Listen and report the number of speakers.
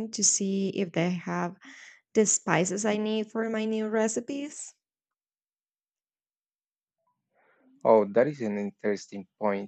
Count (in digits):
2